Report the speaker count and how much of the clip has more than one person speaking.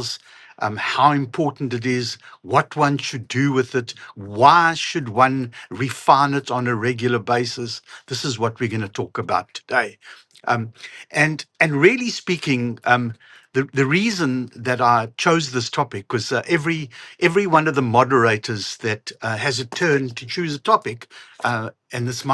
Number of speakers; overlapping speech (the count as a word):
one, no overlap